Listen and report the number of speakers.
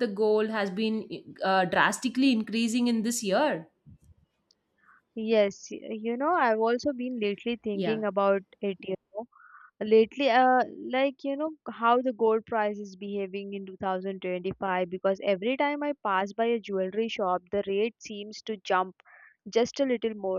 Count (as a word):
two